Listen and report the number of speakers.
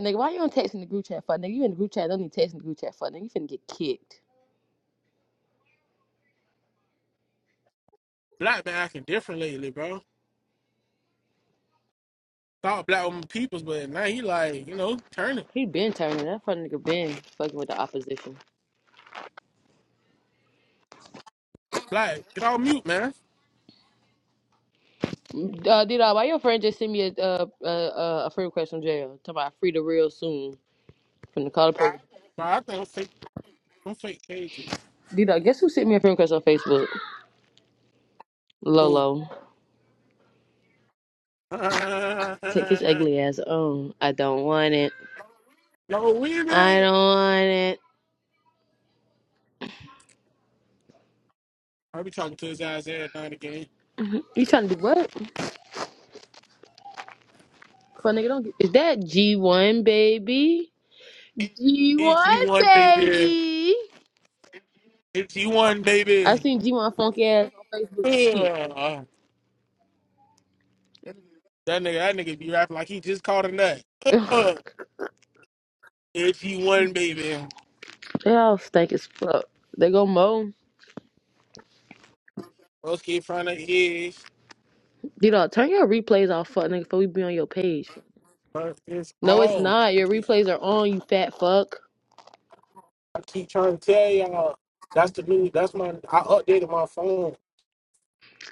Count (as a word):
two